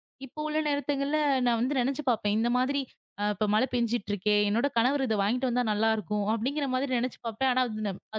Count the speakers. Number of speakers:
one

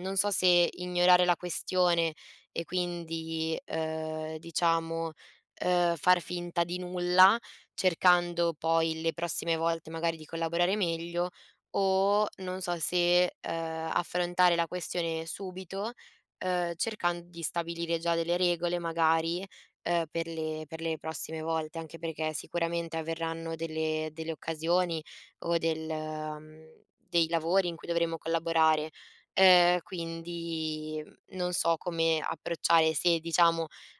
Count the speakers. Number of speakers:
one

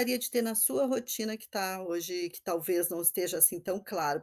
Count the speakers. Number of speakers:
one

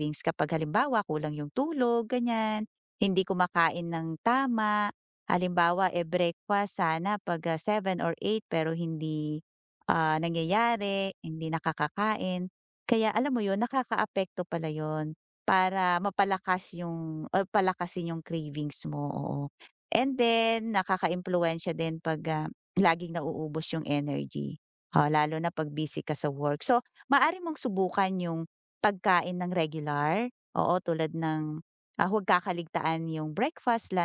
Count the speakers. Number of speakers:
one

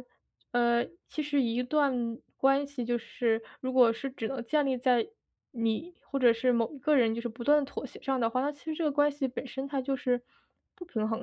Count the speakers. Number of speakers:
one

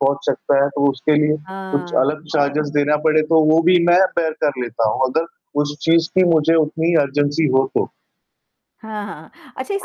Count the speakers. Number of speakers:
two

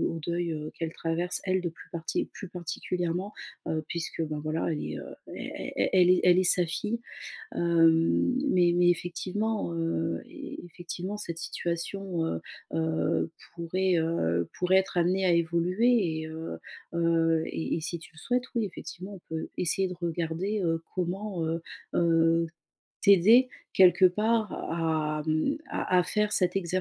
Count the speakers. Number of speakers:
one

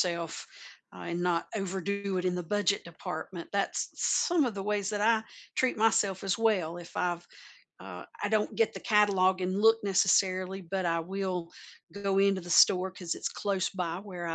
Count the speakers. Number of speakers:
one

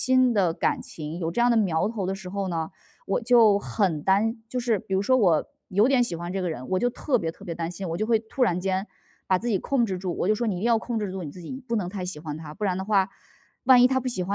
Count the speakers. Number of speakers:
one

